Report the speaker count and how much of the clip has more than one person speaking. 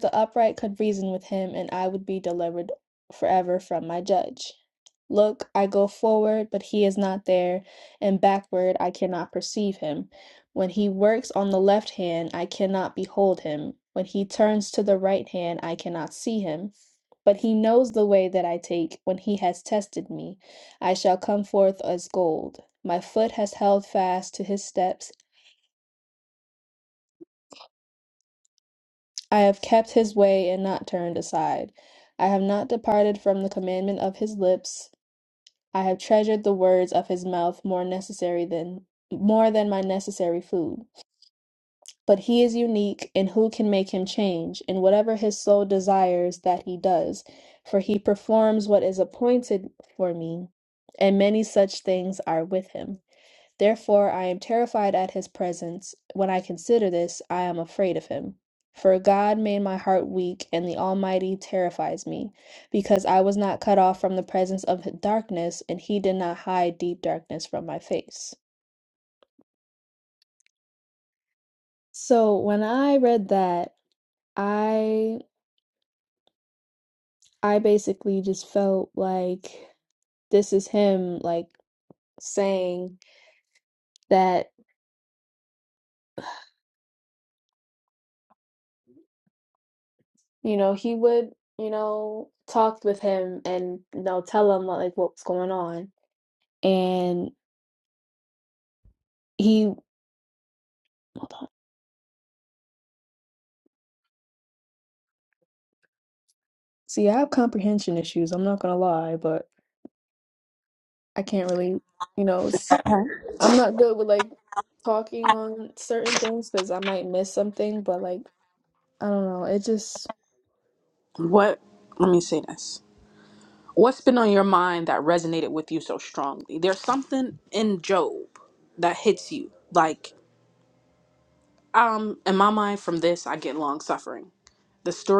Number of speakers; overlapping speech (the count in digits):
2, no overlap